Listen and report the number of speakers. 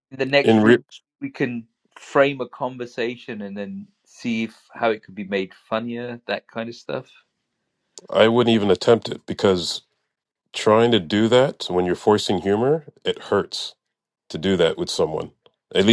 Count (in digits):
2